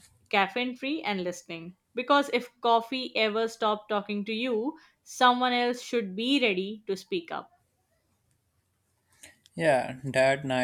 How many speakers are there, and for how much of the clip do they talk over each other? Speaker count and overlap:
2, no overlap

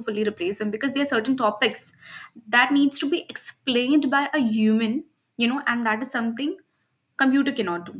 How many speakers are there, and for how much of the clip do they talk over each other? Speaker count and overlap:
1, no overlap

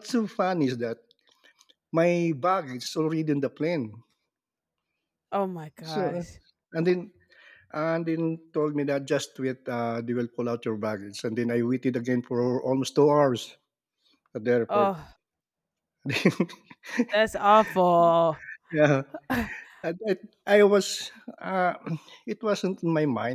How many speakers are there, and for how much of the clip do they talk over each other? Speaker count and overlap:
2, about 2%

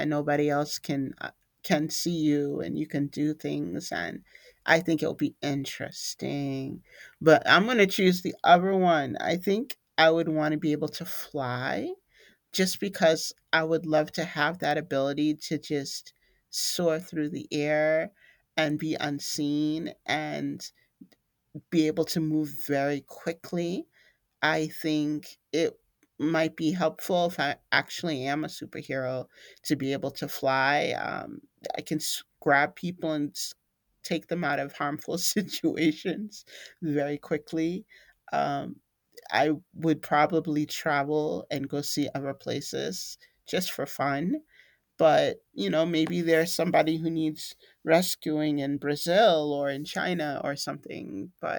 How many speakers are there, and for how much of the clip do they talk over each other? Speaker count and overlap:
1, no overlap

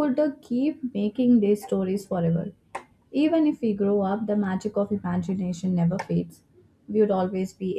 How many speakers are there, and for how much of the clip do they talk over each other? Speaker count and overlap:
1, no overlap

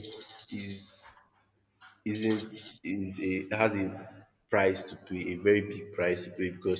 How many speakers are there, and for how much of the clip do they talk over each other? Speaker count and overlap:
1, no overlap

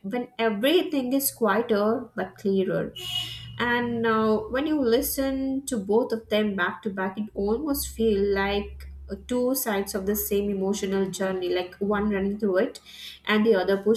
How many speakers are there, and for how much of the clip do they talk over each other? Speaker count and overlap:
1, no overlap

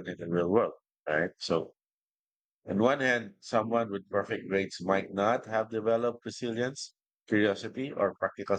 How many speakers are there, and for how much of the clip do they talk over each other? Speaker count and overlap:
1, no overlap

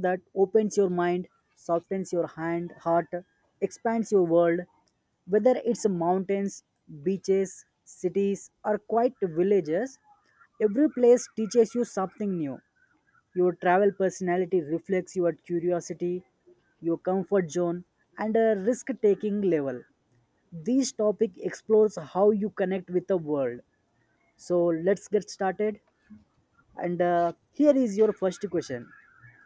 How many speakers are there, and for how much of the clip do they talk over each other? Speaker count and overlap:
1, no overlap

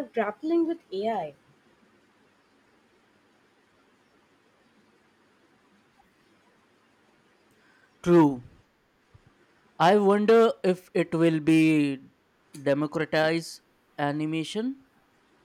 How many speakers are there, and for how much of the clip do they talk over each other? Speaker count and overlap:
2, no overlap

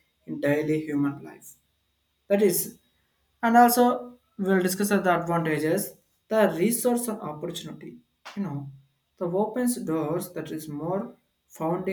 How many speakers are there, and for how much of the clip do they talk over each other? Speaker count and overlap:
1, no overlap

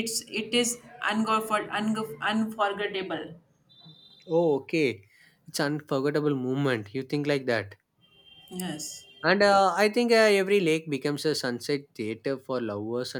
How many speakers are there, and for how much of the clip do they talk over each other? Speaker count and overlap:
2, no overlap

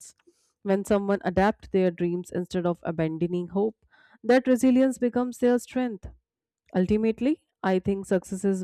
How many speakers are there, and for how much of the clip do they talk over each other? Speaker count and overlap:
1, no overlap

